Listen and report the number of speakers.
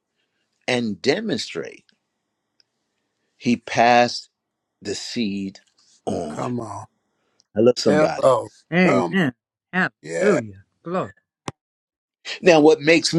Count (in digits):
3